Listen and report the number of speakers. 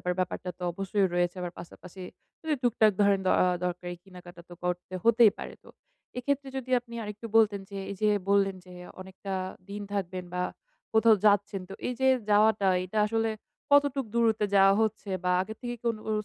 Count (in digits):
1